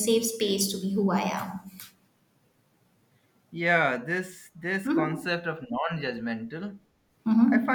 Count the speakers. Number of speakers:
2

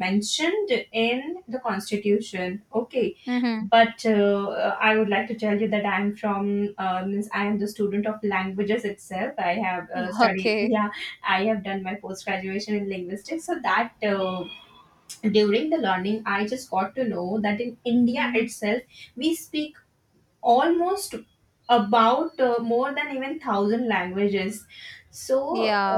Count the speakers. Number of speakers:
2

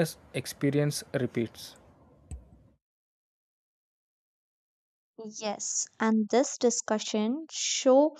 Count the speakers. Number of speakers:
2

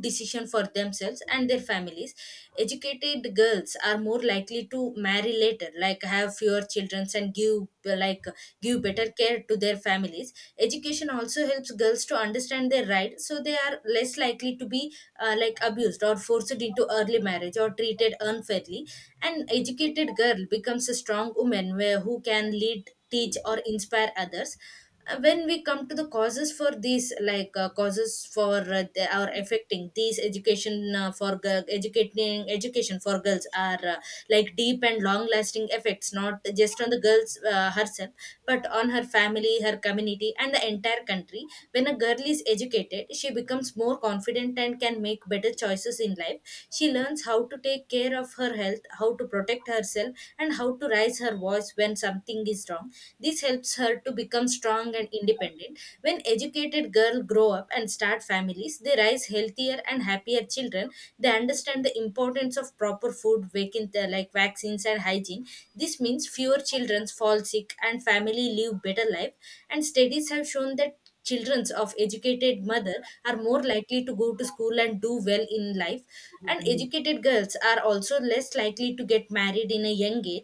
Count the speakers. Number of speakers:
1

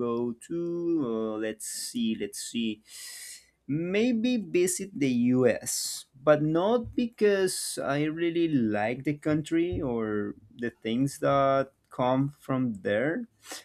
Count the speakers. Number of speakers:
1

